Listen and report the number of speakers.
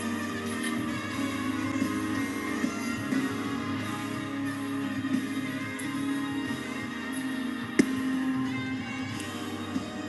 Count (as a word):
zero